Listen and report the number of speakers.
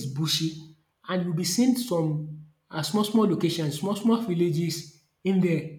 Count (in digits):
1